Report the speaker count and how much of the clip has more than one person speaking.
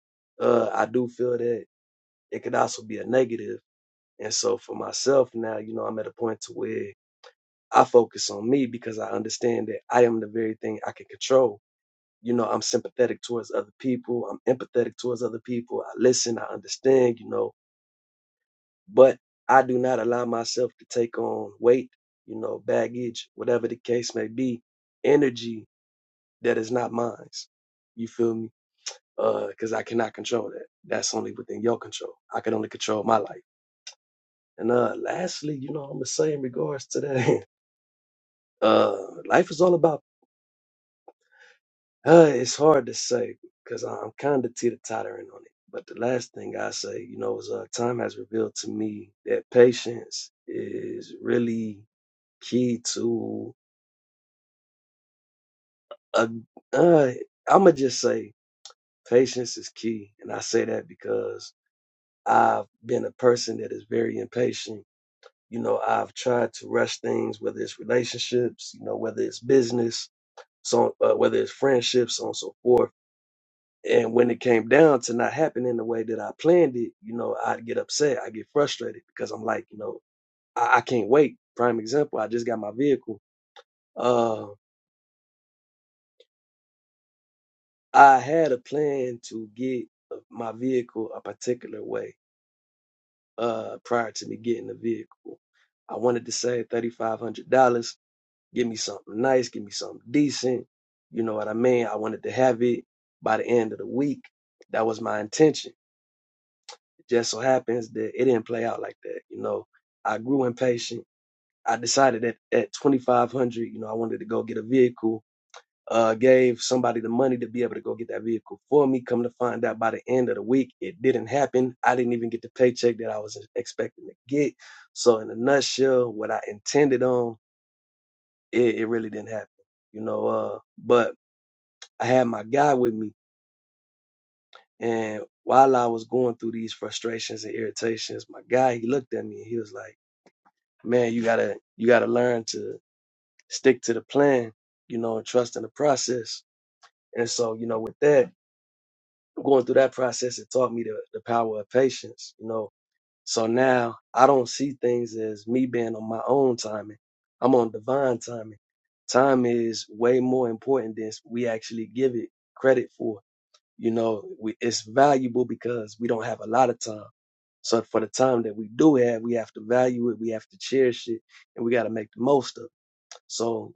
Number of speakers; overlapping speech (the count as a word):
one, no overlap